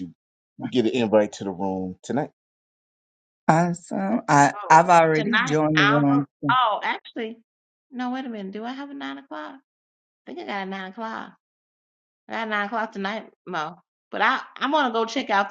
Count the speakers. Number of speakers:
3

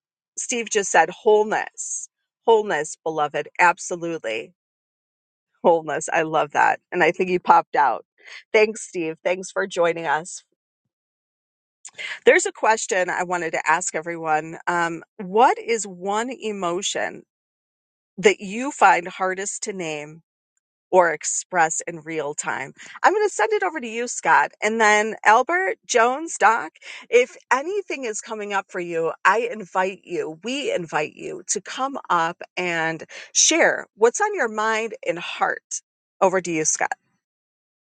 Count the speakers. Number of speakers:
1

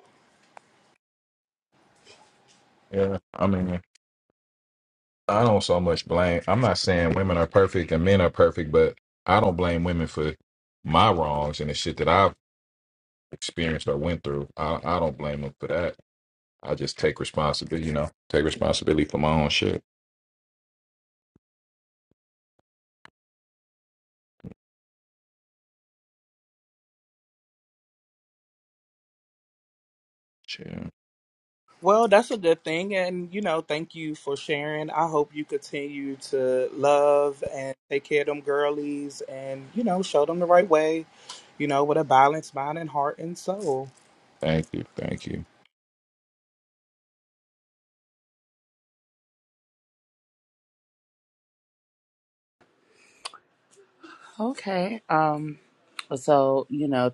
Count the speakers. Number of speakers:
3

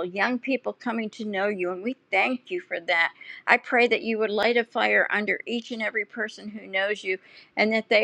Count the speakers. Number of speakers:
1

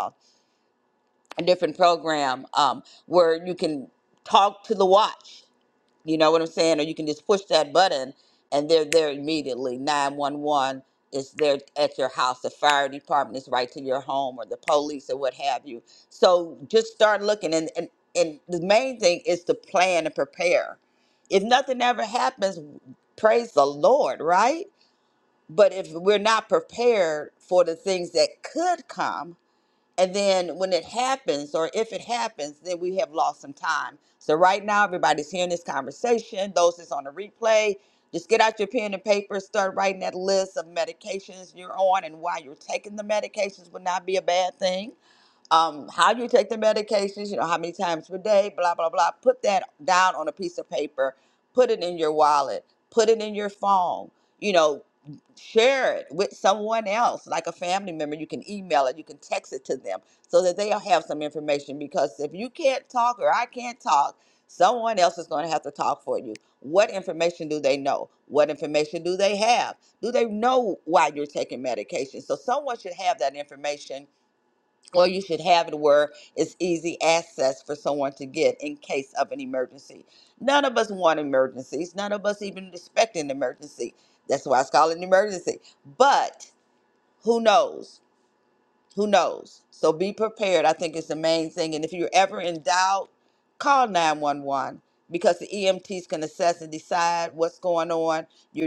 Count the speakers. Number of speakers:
1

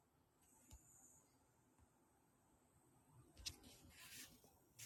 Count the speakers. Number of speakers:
0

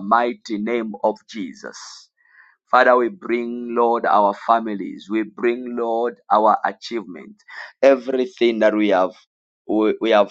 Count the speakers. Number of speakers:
1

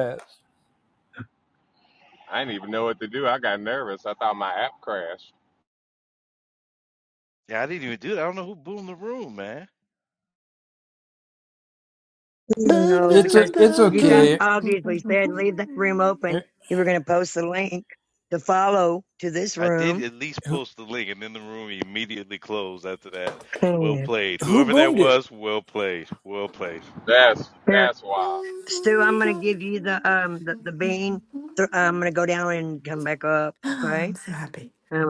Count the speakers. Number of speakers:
5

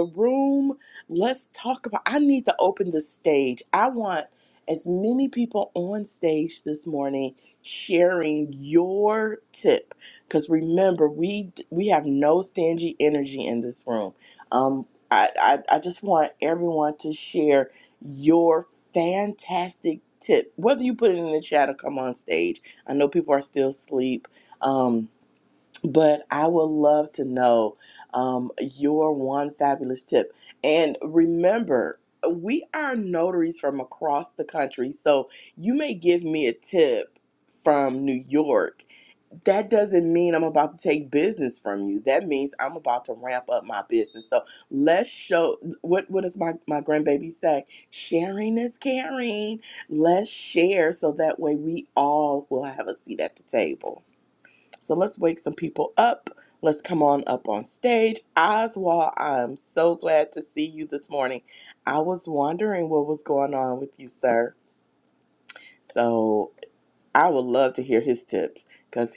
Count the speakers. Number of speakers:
1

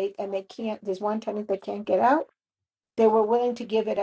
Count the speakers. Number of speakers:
1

